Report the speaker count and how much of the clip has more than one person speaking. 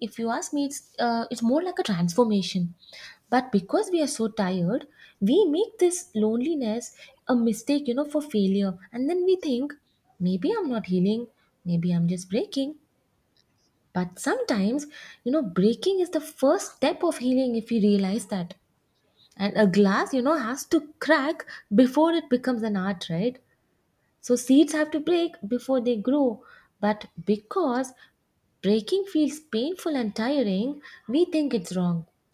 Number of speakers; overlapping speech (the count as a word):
one, no overlap